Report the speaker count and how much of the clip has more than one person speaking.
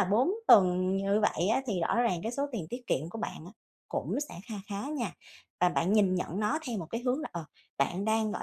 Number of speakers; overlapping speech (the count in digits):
1, no overlap